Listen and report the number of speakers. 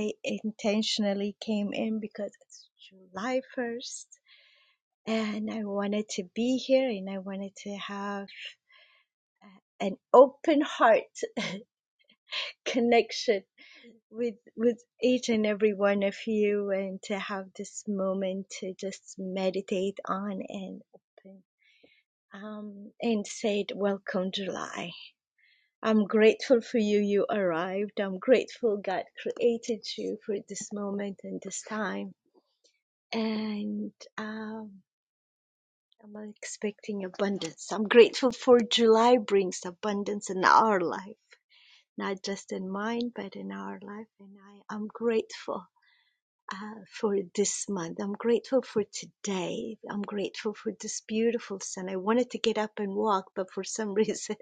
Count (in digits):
1